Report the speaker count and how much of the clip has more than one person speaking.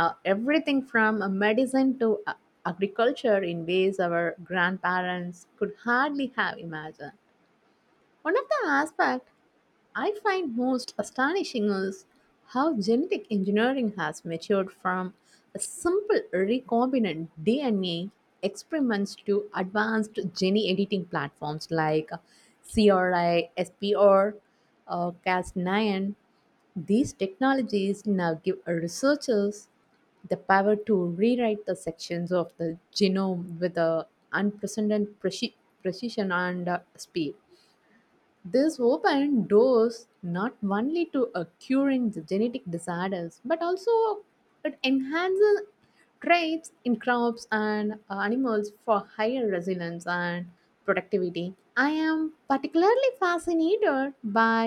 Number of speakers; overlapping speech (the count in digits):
1, no overlap